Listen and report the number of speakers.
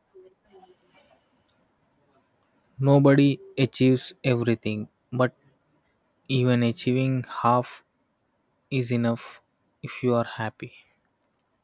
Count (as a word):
one